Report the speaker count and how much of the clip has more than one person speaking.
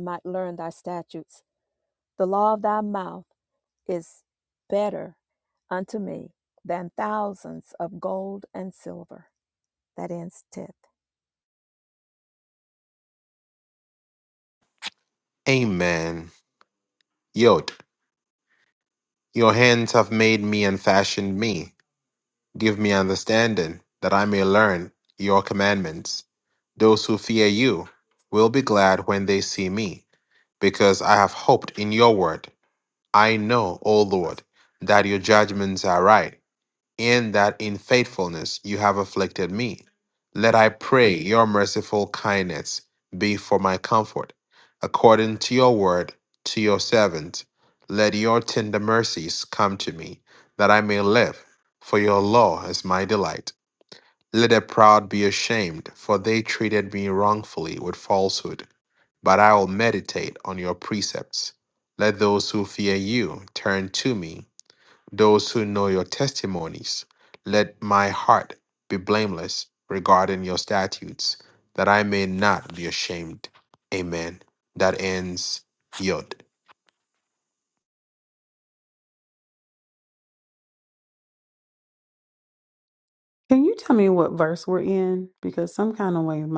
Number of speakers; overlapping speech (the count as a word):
three, no overlap